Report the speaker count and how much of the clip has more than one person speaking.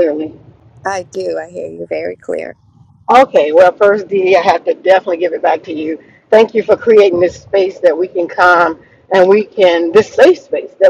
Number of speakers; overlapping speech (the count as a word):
two, no overlap